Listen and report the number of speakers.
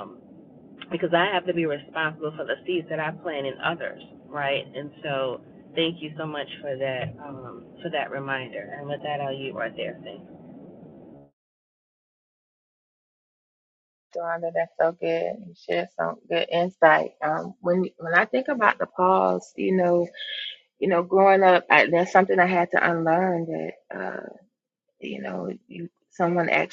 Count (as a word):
two